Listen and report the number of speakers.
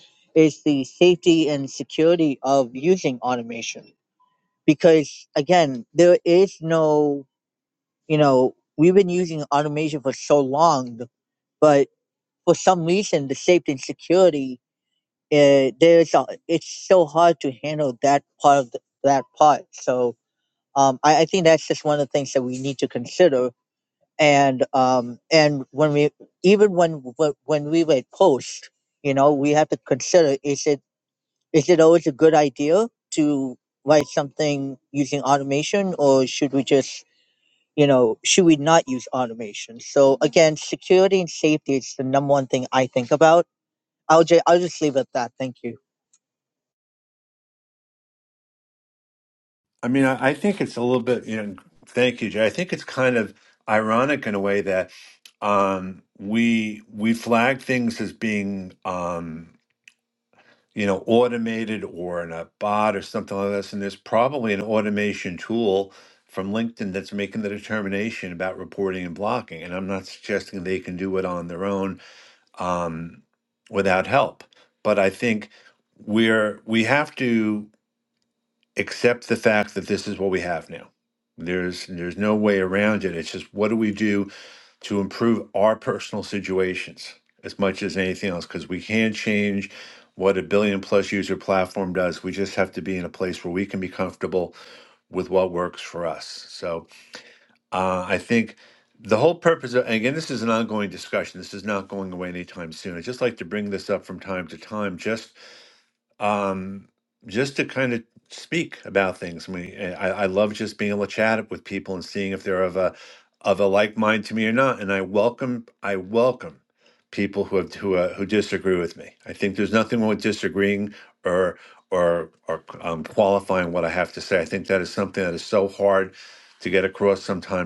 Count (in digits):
2